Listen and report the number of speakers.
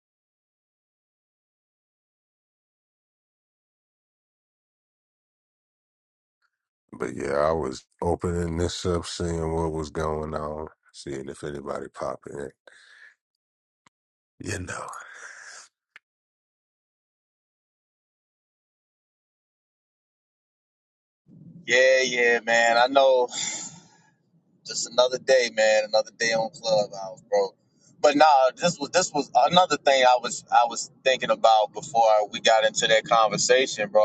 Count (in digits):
2